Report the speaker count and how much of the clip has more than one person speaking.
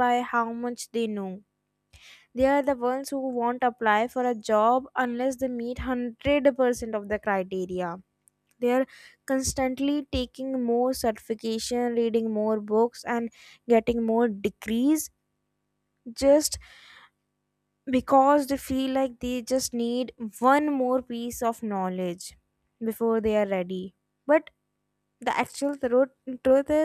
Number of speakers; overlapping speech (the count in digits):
1, no overlap